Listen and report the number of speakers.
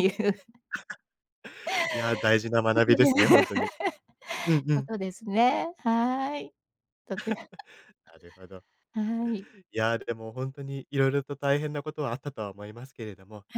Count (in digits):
2